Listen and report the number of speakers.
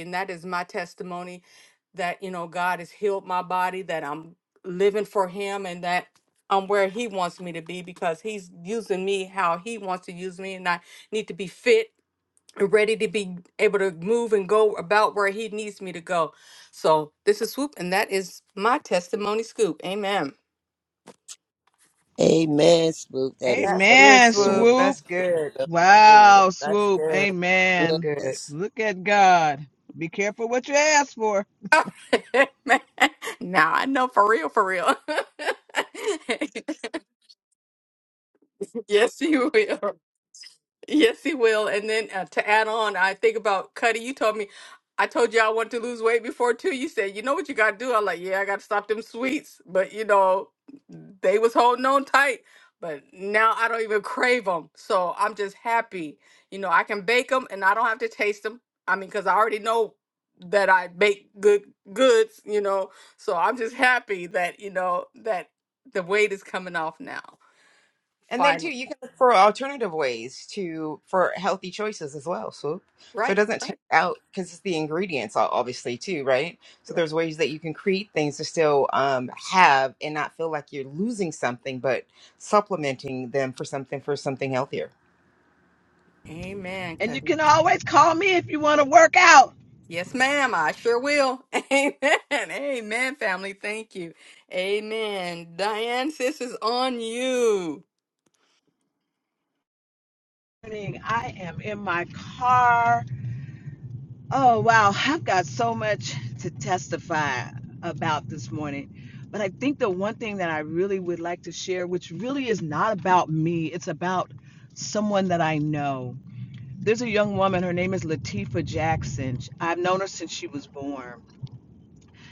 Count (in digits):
4